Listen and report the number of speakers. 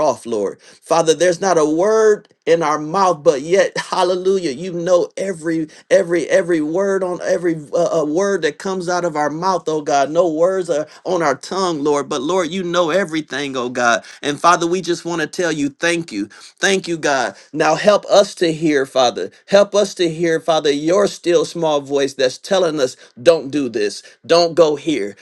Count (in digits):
1